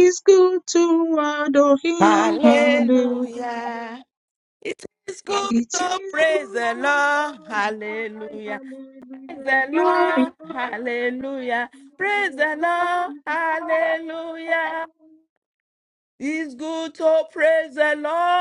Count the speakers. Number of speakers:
two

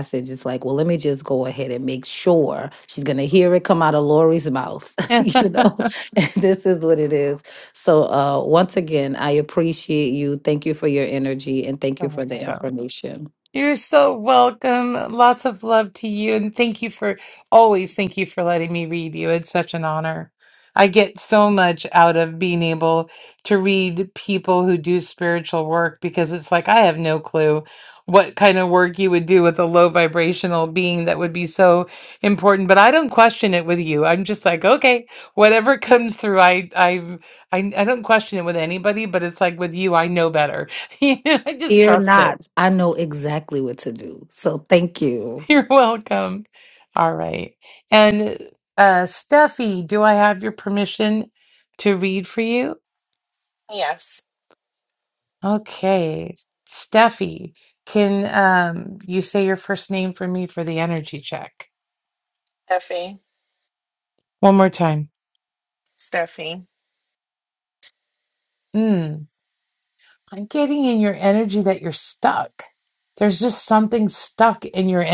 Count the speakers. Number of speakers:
three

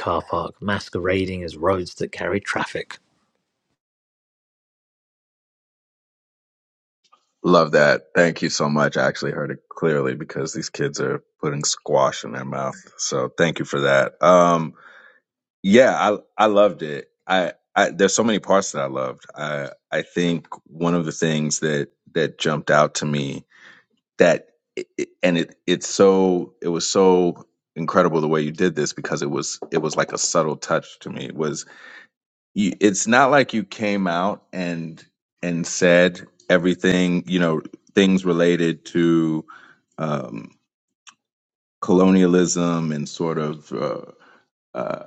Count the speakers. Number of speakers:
two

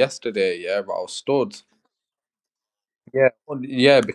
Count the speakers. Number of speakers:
one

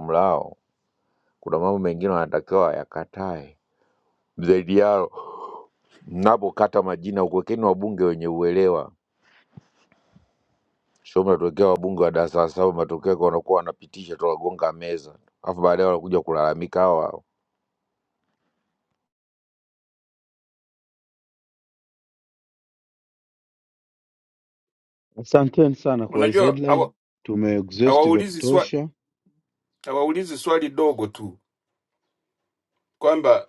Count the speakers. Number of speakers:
three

